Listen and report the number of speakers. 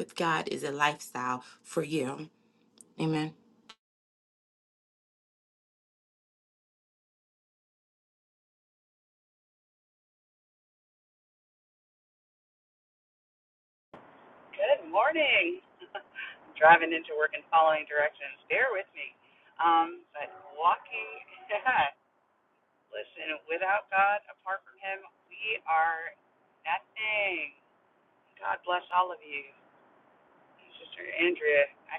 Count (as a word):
two